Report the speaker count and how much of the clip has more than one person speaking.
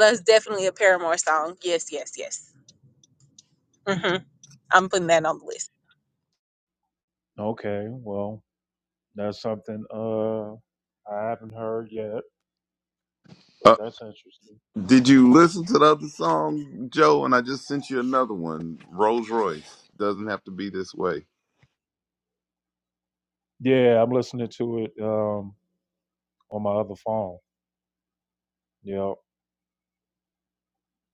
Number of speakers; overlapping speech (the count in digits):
3, under 1%